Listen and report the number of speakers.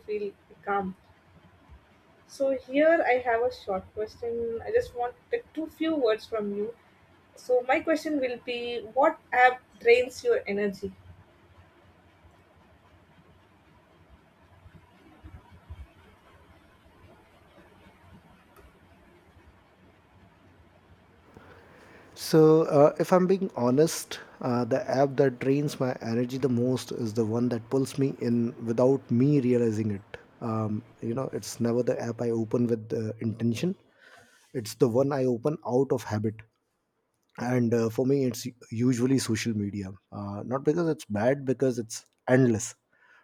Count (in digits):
2